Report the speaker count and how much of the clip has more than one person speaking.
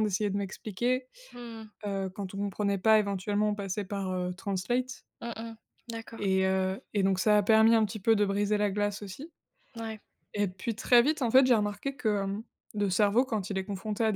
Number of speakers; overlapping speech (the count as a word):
two, about 1%